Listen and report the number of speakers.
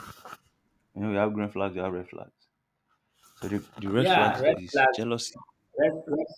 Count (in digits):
2